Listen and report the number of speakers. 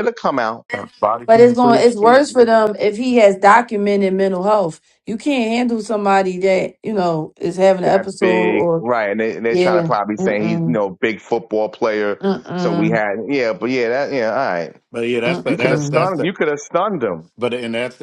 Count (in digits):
3